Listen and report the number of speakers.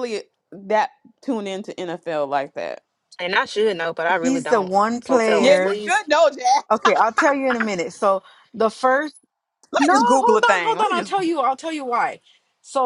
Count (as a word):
three